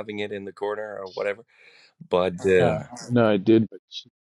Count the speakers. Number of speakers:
2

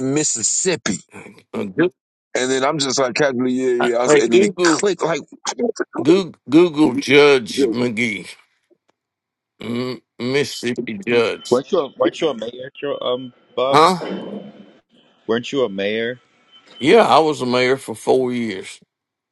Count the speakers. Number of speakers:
3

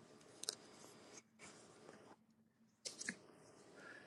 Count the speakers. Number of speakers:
0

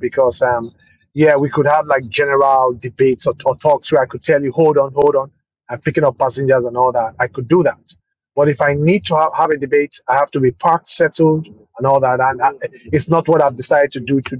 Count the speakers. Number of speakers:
1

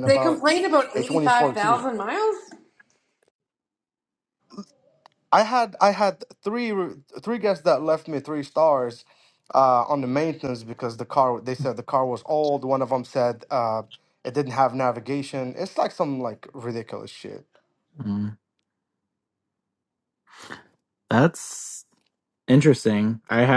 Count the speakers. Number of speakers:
3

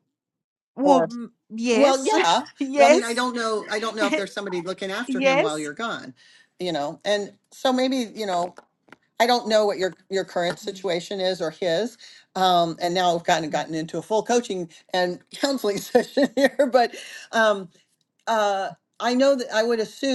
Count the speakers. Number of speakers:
2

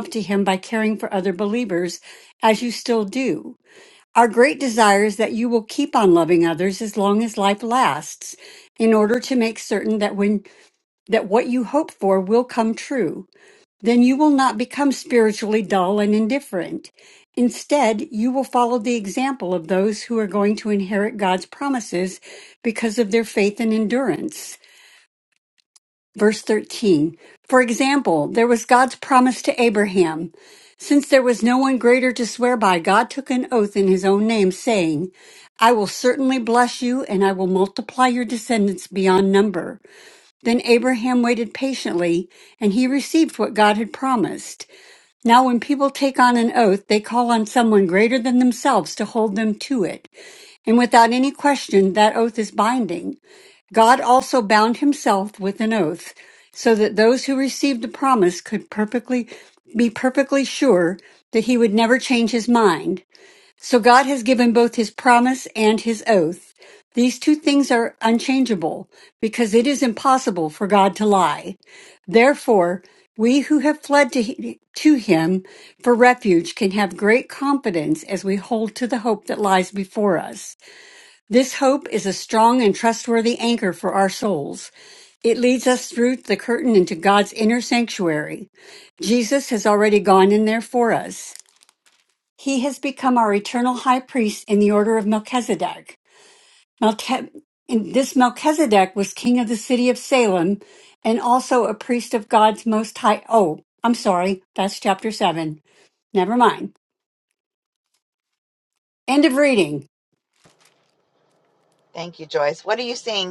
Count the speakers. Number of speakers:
2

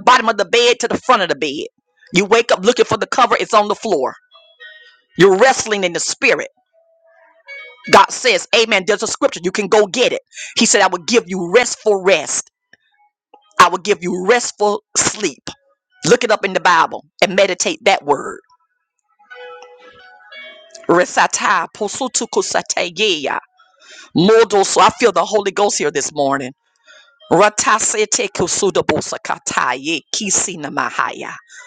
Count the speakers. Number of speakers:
1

